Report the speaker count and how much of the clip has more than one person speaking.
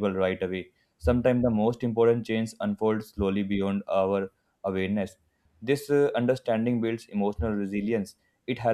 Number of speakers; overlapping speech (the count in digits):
1, no overlap